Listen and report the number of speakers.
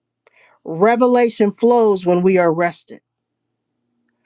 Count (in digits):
1